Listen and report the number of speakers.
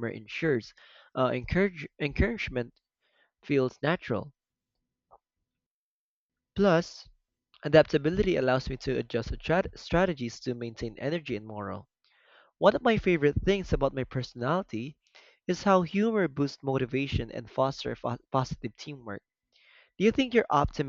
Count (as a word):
one